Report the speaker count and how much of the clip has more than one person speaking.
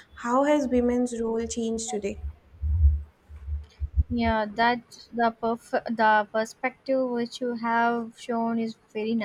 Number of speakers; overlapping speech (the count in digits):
2, no overlap